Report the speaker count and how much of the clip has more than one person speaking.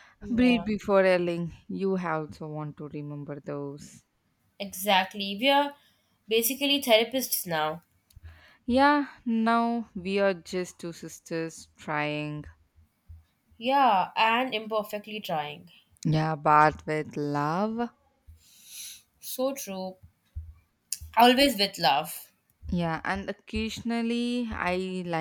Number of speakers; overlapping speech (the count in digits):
2, about 2%